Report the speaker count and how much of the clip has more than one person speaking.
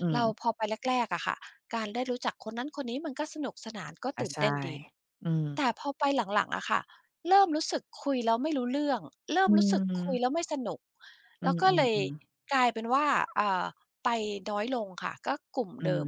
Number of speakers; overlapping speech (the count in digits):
2, about 9%